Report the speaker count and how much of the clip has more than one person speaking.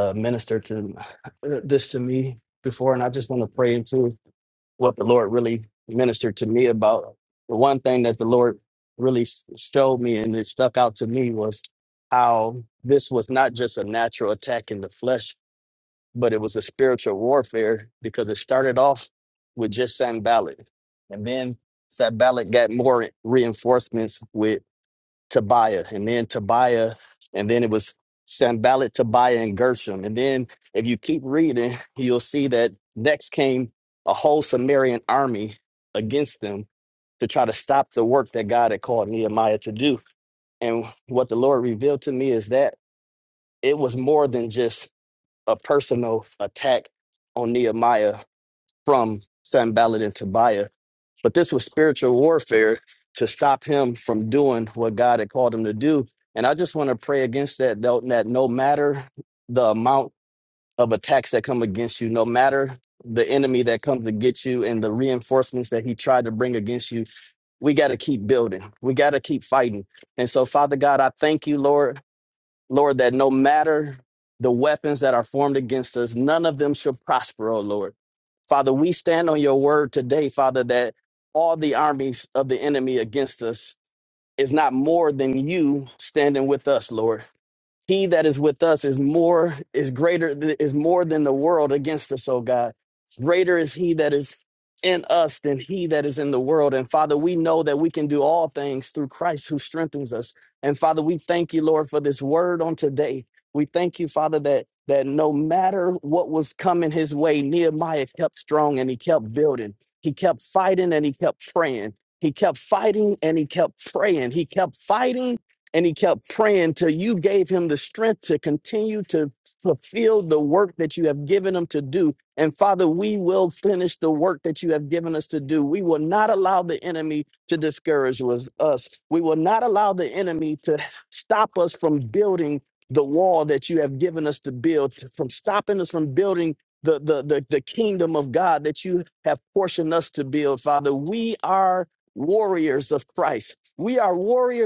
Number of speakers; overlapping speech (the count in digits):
1, no overlap